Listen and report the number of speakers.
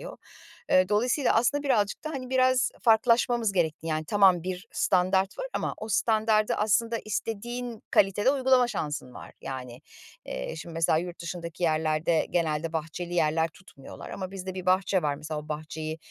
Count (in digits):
1